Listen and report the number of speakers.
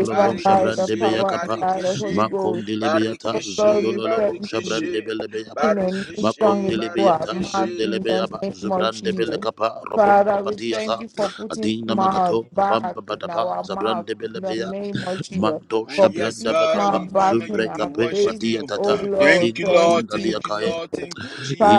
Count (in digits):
3